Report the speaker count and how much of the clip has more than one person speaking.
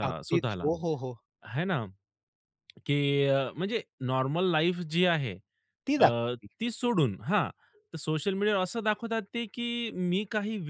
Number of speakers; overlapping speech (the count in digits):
2, about 8%